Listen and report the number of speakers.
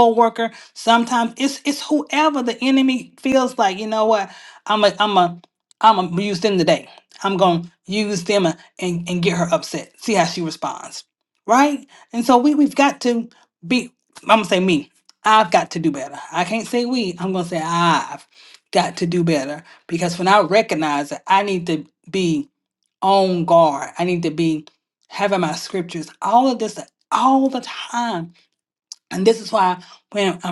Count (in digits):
1